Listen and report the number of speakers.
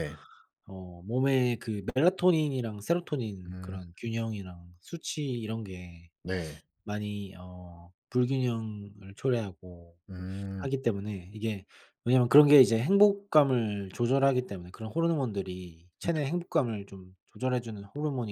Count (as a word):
two